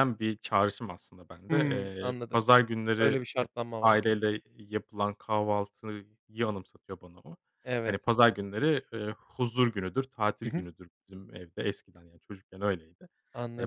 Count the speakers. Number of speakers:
2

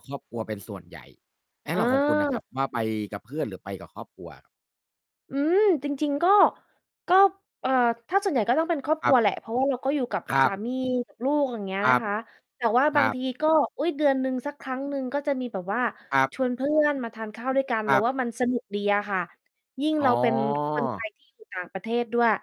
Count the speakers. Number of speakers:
2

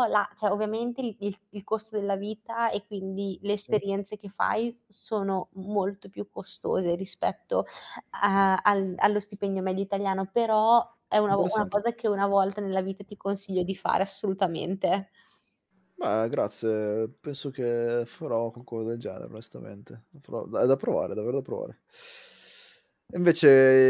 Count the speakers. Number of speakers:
2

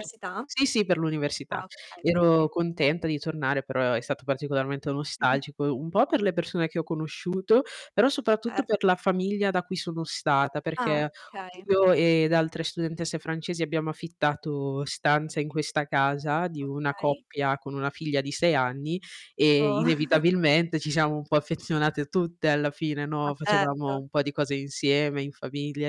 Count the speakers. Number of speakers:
2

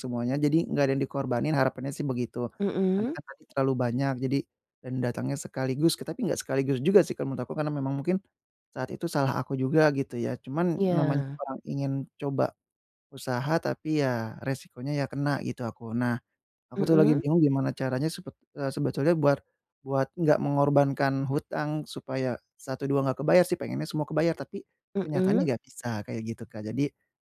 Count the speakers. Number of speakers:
2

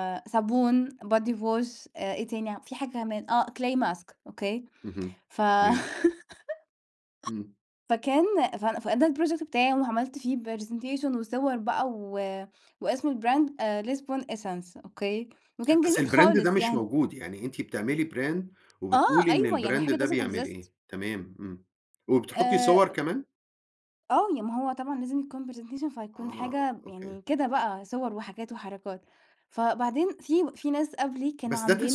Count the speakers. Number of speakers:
2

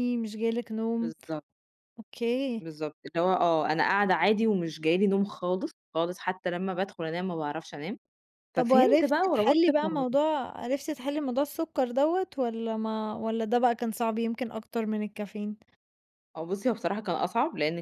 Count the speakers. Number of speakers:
2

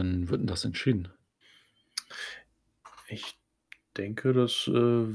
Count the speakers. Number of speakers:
2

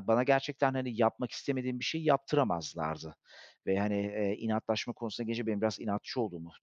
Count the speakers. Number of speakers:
1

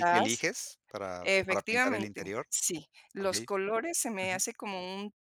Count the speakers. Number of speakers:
2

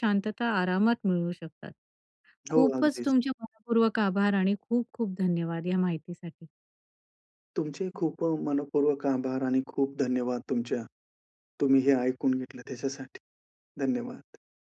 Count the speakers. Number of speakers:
2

